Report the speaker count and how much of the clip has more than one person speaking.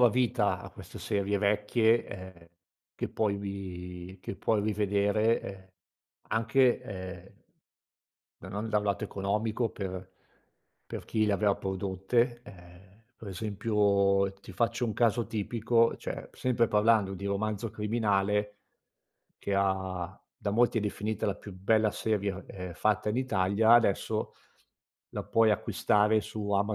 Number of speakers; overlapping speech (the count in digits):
1, no overlap